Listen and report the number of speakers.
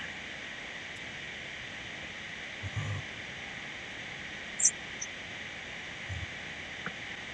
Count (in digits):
0